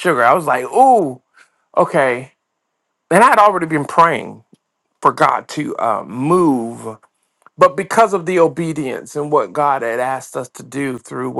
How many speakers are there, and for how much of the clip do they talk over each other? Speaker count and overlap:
1, no overlap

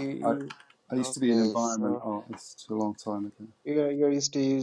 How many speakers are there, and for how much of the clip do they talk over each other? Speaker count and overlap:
2, about 31%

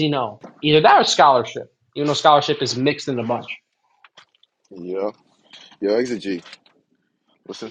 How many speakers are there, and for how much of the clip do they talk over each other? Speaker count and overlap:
2, no overlap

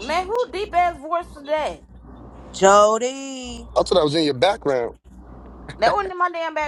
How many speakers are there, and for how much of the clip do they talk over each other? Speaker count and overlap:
3, no overlap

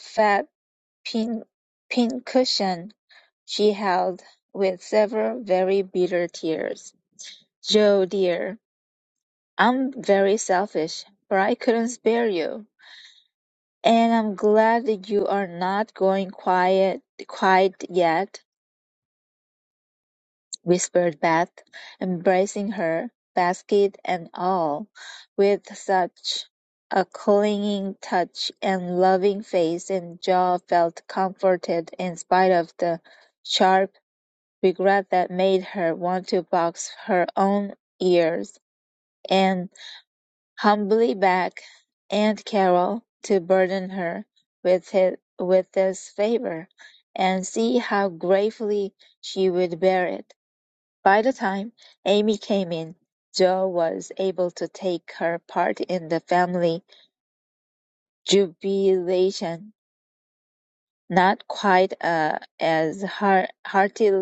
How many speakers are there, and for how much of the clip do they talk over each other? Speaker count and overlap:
1, no overlap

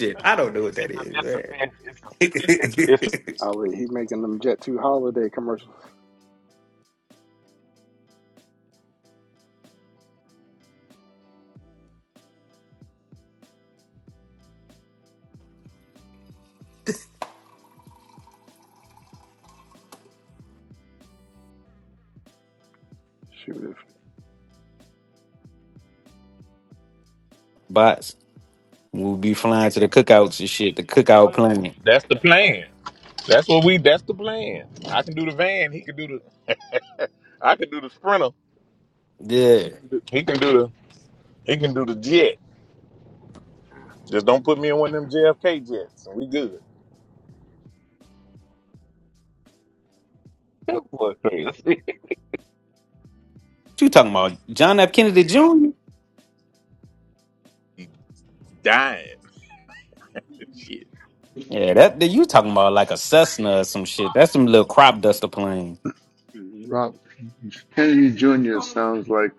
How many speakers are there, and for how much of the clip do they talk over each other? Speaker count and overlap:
5, about 1%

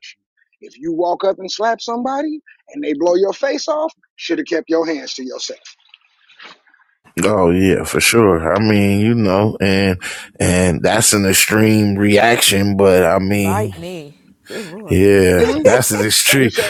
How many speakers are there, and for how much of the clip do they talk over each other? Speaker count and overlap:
3, about 6%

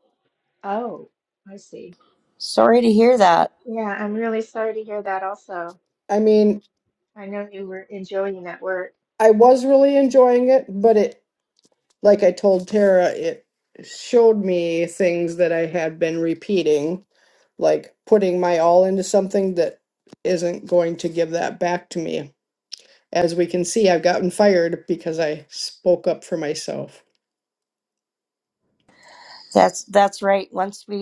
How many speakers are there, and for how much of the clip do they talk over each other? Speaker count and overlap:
3, no overlap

